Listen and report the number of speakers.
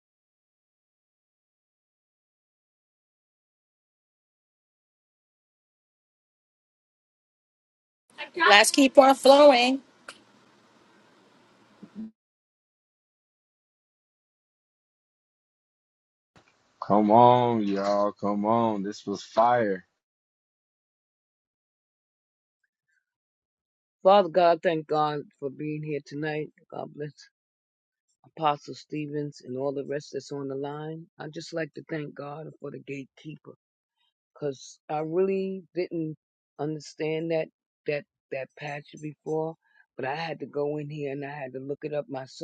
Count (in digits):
3